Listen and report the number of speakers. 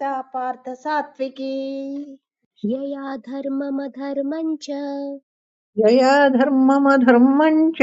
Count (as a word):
three